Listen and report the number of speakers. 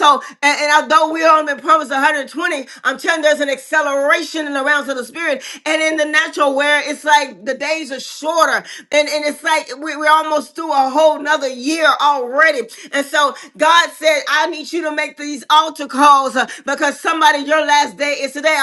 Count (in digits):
1